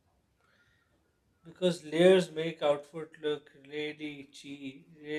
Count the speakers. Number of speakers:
1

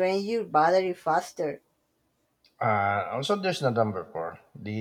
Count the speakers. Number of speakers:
2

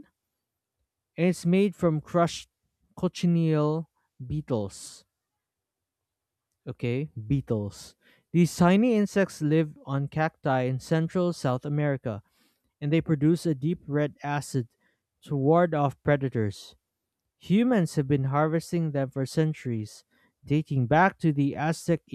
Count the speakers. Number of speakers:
1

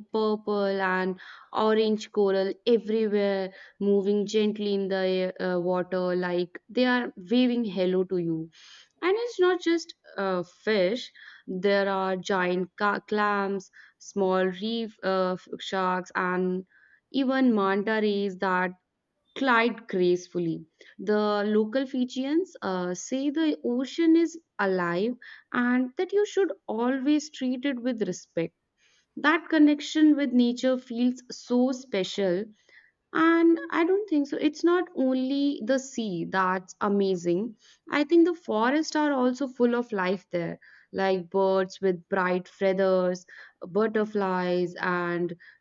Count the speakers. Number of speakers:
1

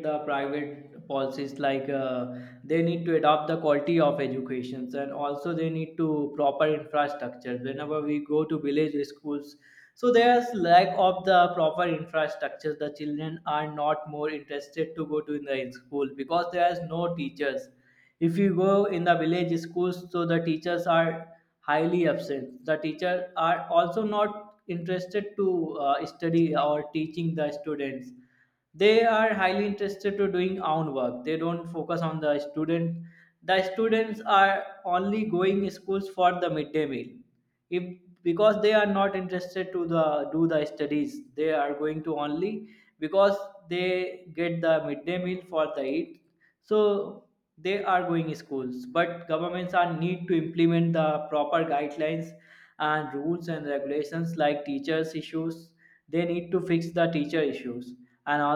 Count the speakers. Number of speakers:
1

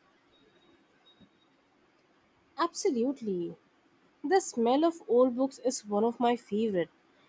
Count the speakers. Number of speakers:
1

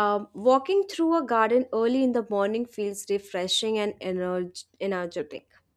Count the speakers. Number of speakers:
1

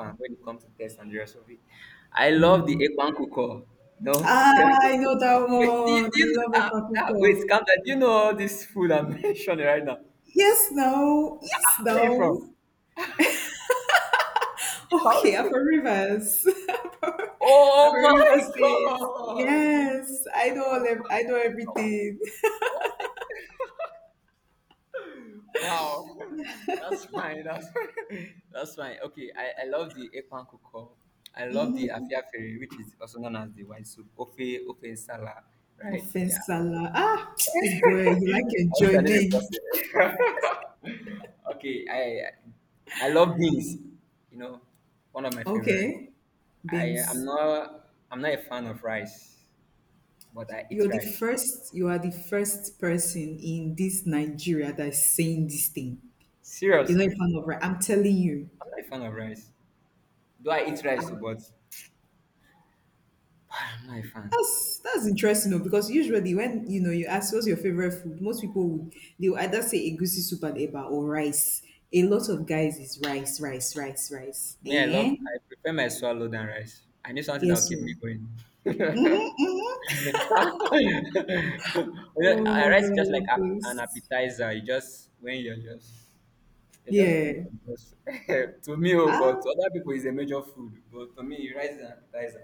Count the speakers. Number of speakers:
2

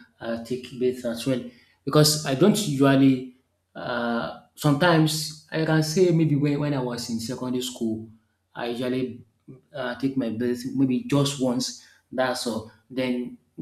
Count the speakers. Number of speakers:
1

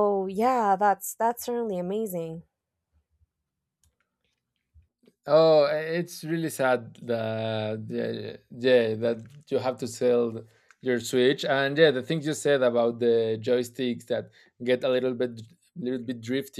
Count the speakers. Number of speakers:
2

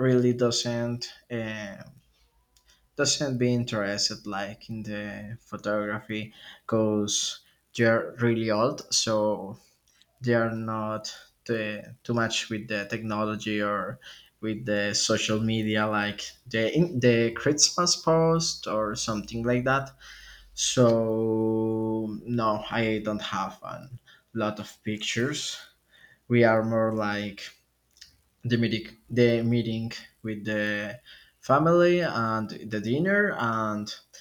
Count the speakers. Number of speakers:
1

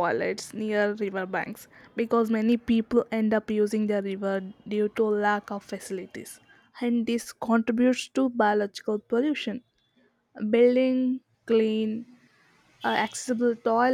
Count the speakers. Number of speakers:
1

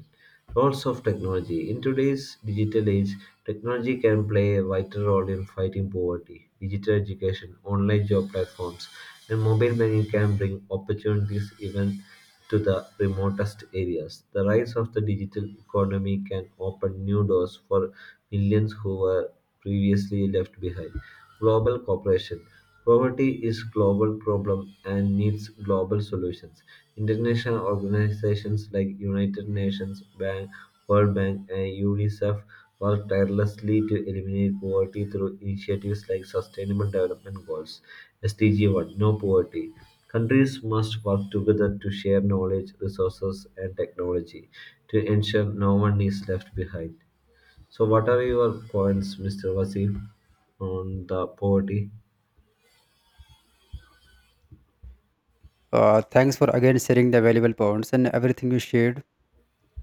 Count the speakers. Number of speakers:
2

